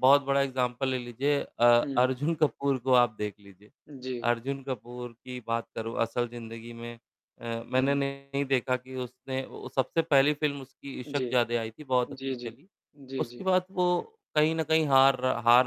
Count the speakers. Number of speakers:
two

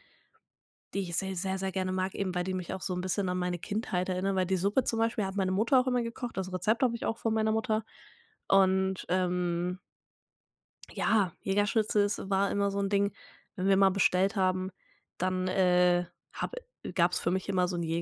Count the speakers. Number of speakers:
one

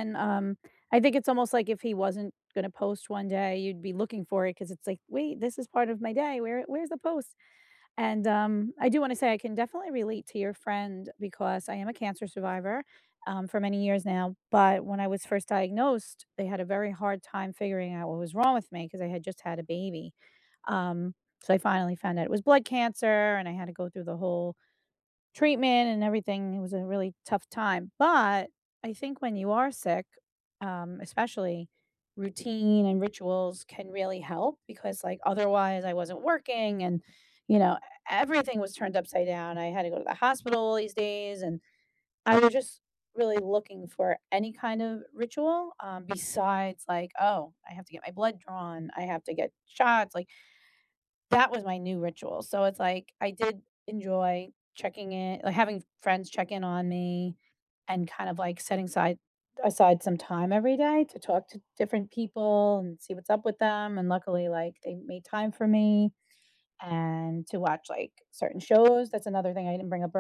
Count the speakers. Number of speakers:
one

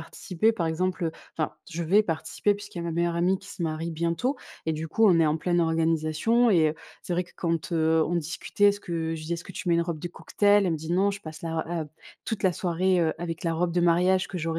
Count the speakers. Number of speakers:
one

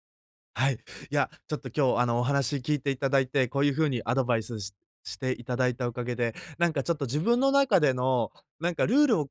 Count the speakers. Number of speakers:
one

